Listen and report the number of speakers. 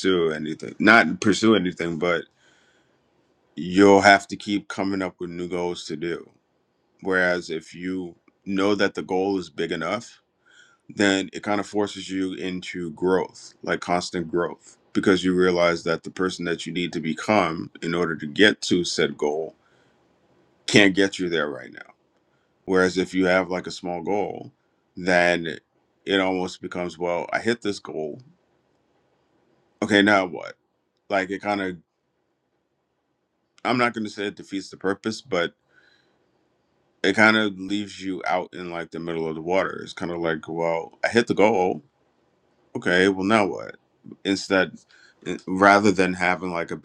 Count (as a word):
one